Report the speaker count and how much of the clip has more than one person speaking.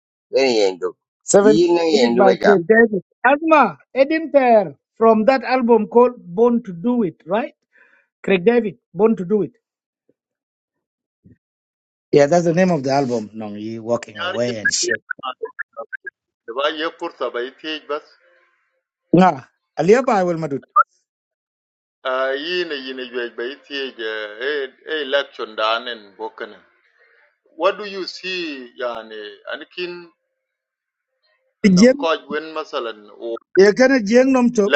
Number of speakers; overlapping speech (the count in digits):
3, about 5%